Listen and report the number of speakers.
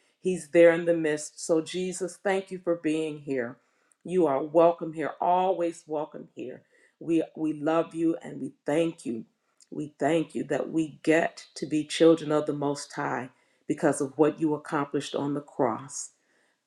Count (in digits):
1